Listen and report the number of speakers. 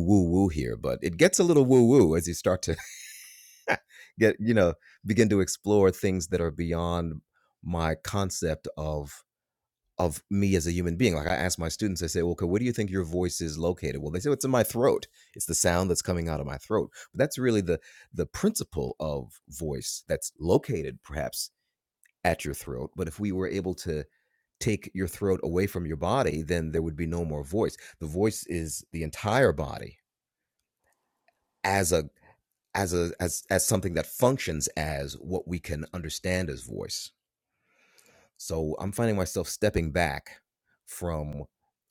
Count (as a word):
one